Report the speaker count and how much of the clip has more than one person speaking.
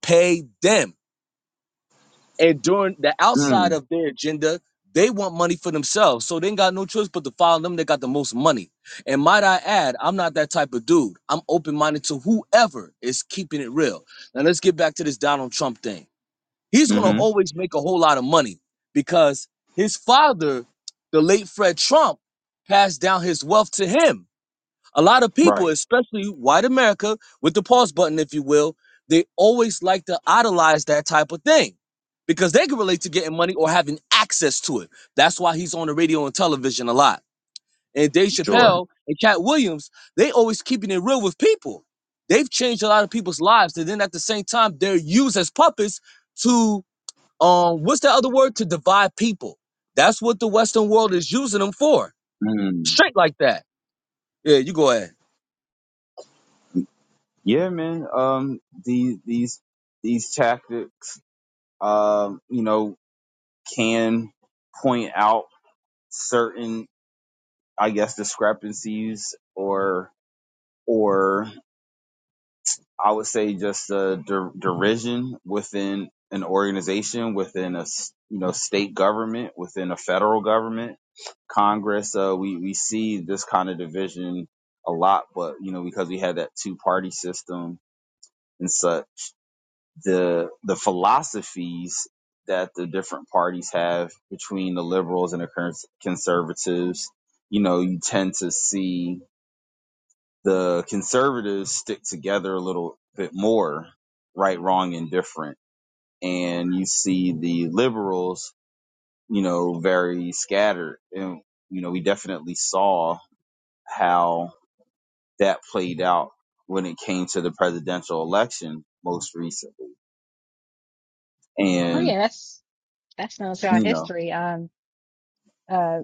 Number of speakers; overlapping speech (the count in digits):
3, about 2%